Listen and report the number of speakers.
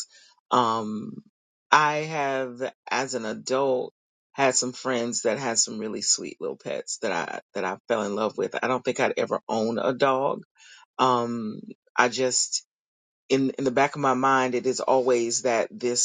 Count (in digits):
1